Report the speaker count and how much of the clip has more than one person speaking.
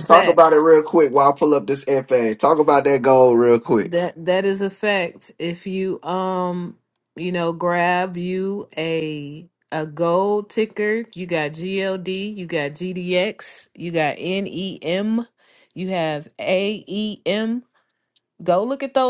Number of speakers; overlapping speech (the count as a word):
two, about 2%